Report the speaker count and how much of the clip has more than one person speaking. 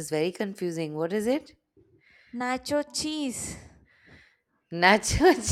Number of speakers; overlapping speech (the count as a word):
two, no overlap